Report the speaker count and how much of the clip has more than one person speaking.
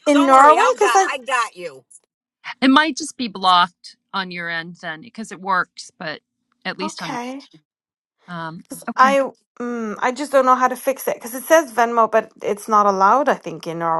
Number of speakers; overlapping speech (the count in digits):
3, about 11%